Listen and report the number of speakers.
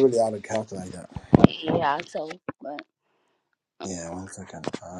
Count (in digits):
2